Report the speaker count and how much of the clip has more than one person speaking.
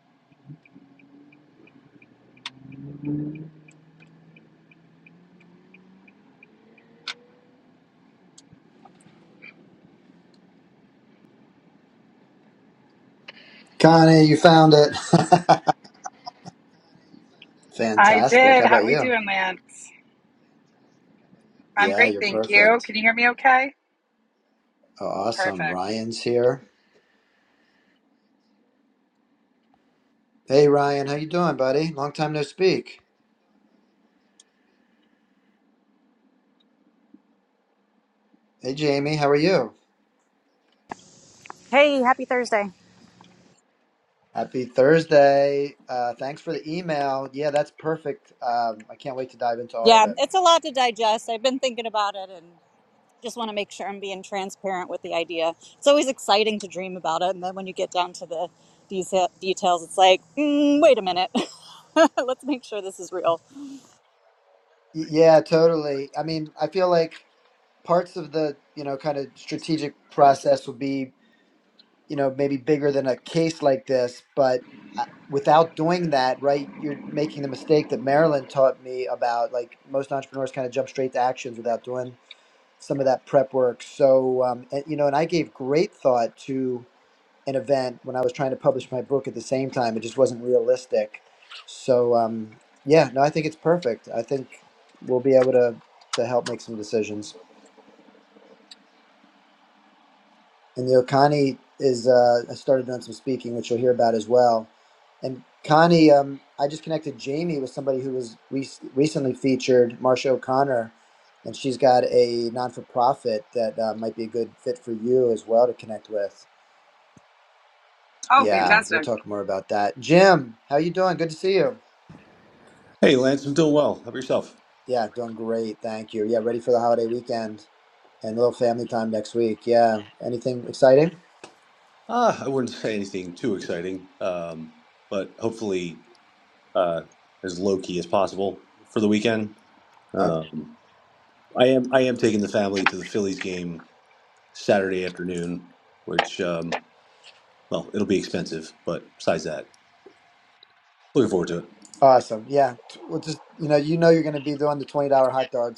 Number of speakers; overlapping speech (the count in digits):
4, about 2%